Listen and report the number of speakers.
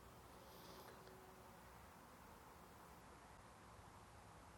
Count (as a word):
zero